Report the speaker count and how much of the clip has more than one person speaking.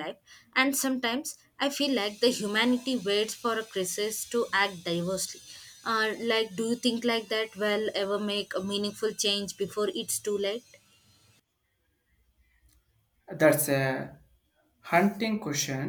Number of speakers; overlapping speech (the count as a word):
two, no overlap